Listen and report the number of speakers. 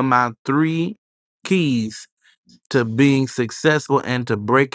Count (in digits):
1